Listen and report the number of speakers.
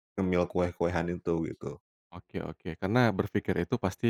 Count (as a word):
two